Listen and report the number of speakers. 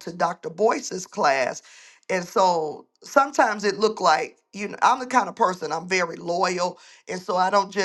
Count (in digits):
1